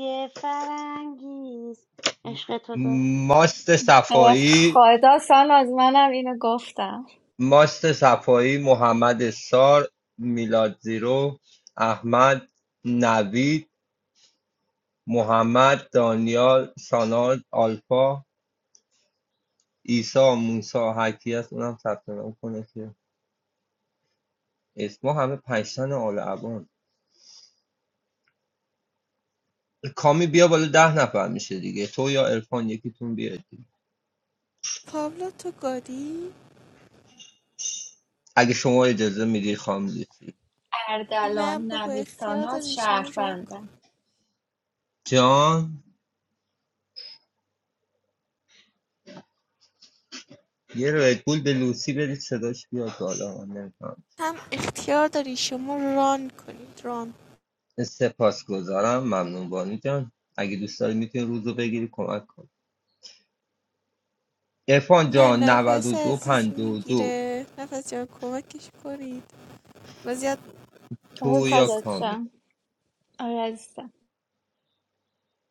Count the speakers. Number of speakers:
four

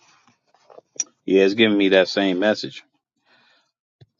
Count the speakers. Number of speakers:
one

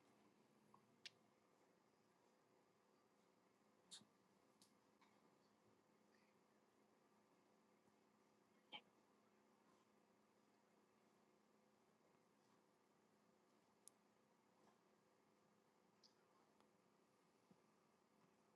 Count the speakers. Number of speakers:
zero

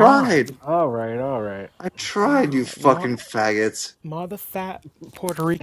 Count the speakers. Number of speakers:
three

